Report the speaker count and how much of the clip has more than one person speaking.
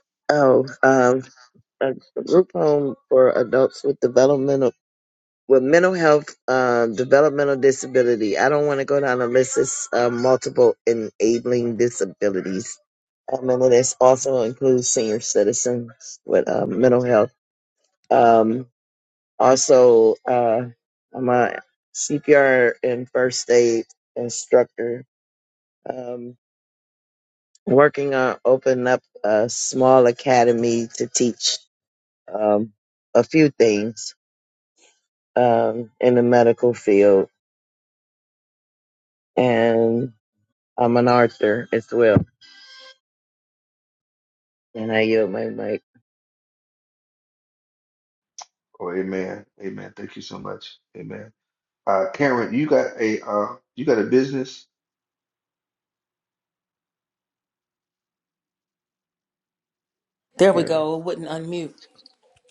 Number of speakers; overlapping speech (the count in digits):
3, about 1%